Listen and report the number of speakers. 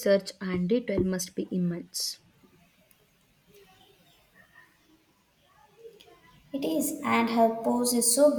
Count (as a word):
two